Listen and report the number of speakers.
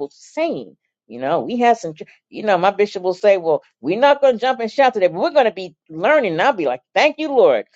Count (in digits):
1